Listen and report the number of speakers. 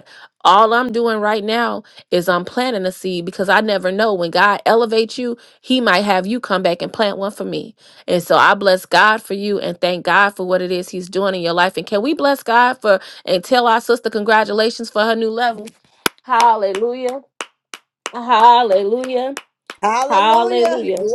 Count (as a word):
two